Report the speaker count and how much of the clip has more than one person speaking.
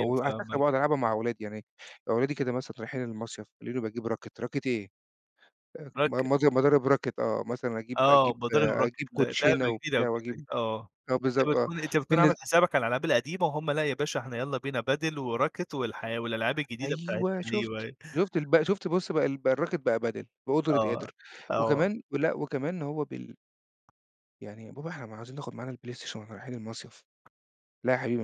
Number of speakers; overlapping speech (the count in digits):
2, about 21%